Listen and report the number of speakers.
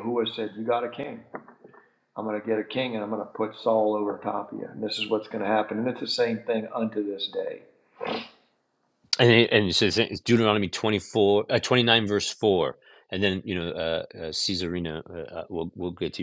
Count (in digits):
2